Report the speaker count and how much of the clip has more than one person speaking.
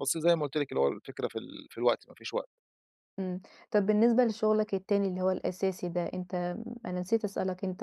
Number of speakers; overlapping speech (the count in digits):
2, no overlap